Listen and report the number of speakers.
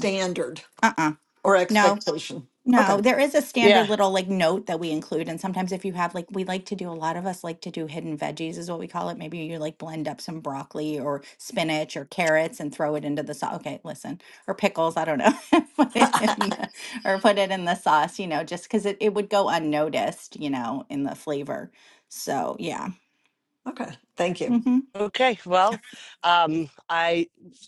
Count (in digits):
3